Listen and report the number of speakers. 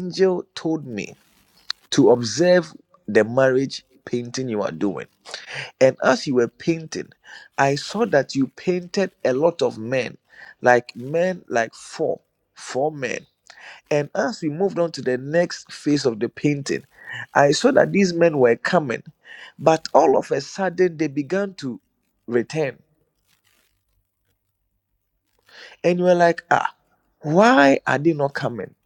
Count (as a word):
one